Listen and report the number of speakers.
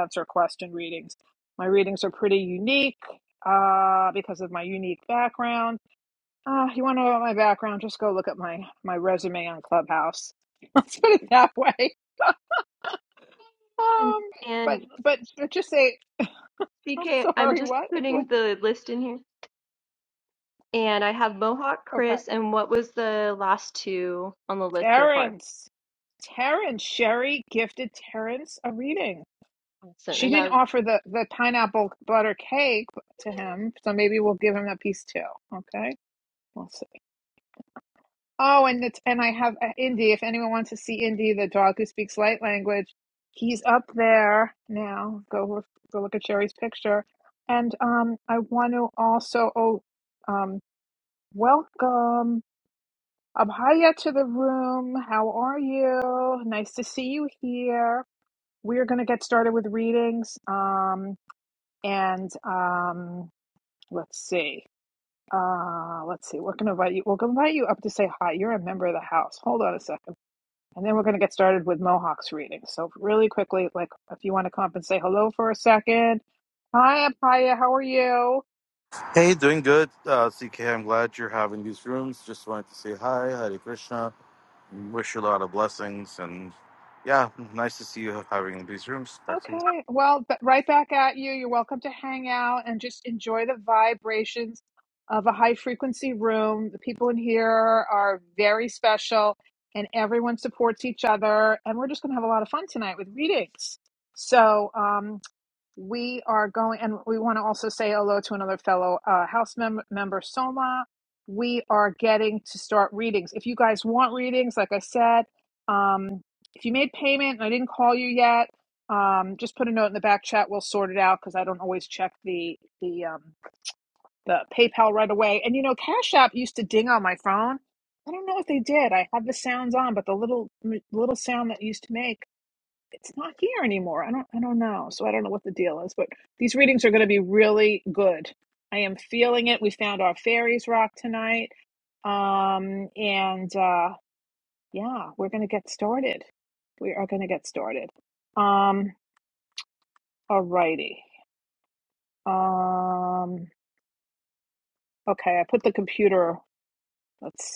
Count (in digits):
3